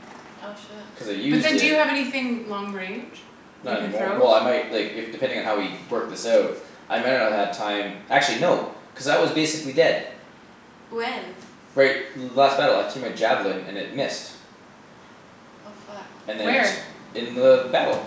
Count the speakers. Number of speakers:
three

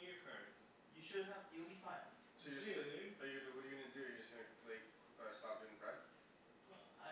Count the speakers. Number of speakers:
three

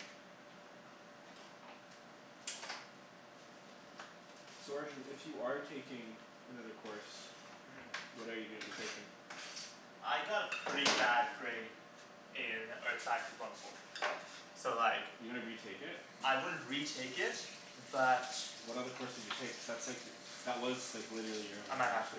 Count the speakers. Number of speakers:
two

